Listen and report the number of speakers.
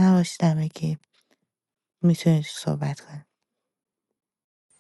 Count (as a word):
one